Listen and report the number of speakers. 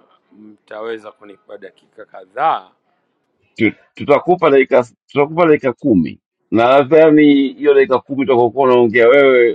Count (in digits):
2